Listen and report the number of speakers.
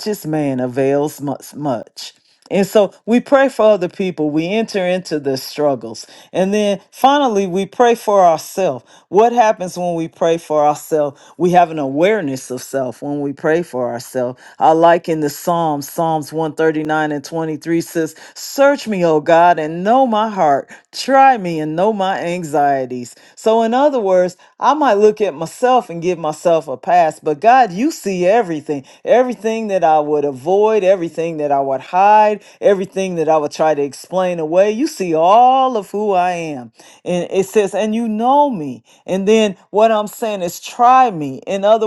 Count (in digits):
1